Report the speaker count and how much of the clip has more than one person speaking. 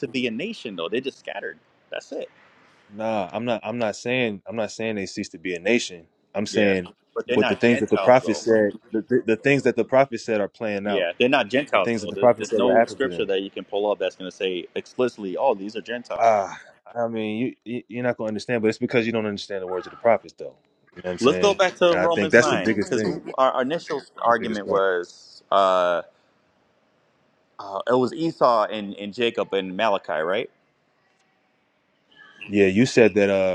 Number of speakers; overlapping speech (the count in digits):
2, about 17%